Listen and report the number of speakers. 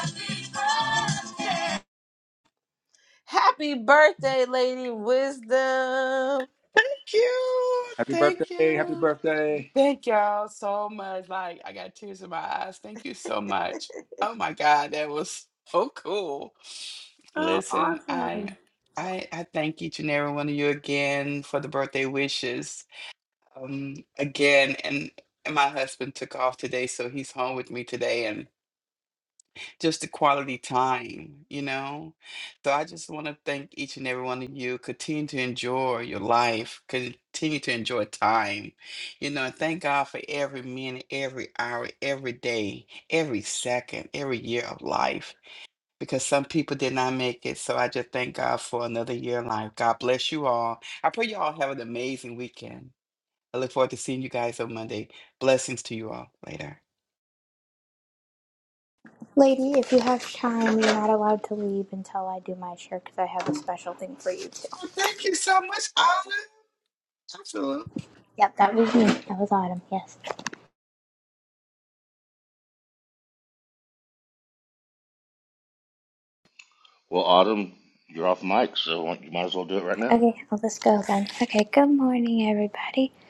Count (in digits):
5